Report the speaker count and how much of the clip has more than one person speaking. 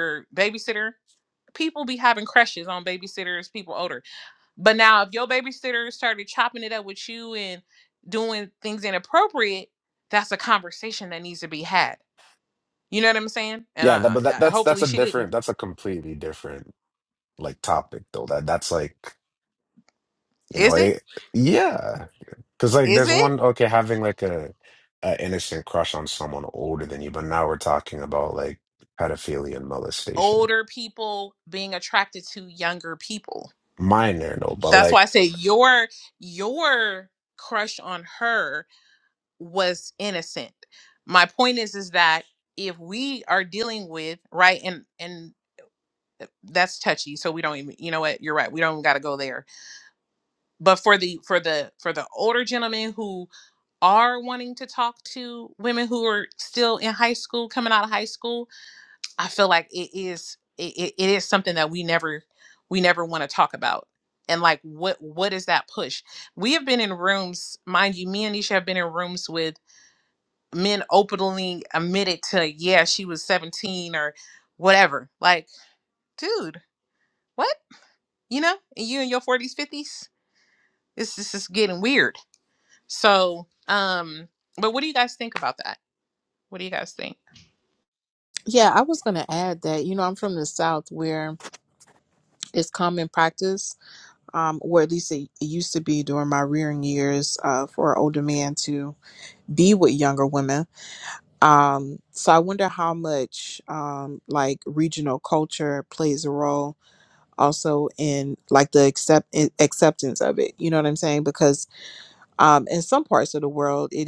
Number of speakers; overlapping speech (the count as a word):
three, about 3%